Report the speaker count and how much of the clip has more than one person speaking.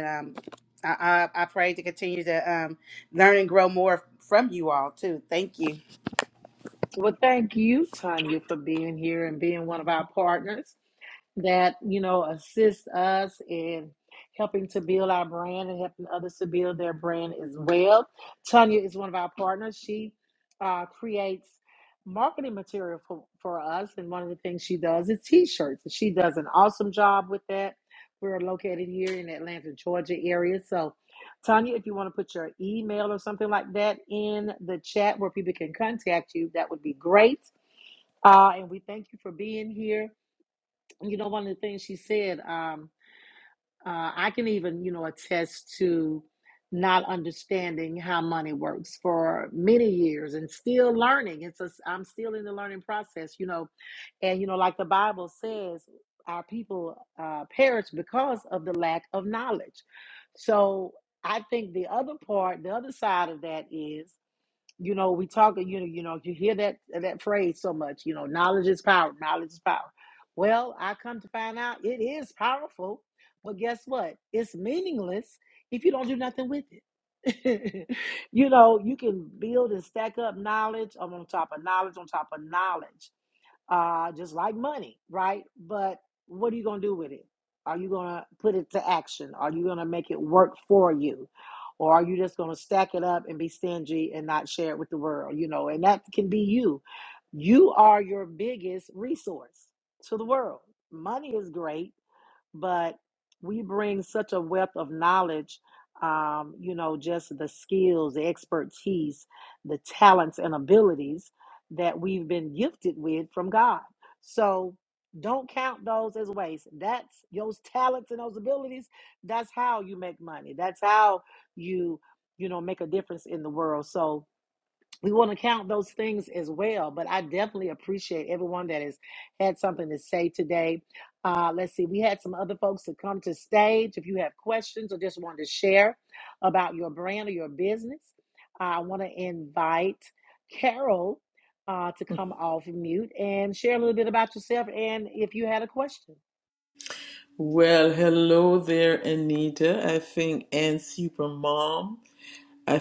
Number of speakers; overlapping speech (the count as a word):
three, no overlap